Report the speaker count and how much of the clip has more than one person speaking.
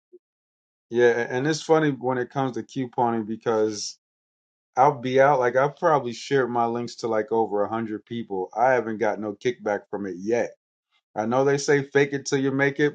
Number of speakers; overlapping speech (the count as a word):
one, no overlap